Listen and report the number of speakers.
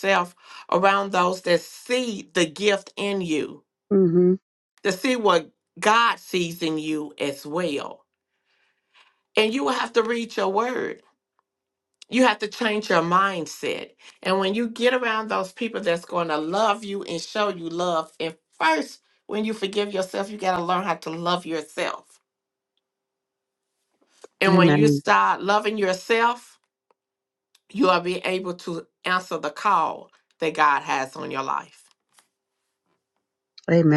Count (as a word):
two